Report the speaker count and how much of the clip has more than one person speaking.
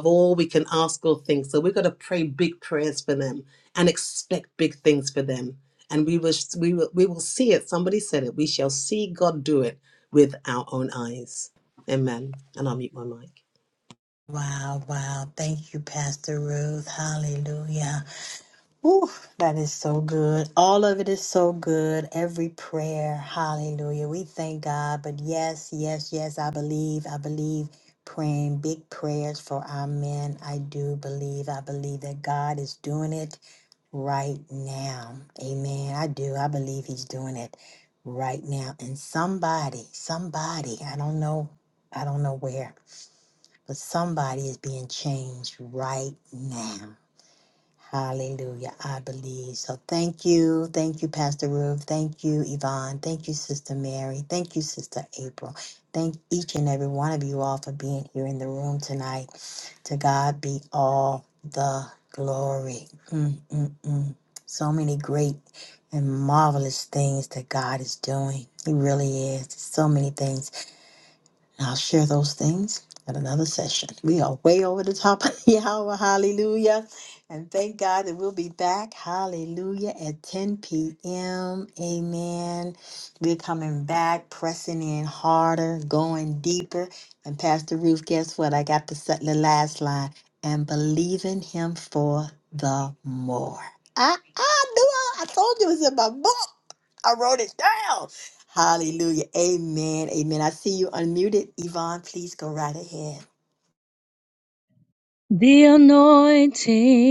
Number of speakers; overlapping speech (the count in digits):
3, no overlap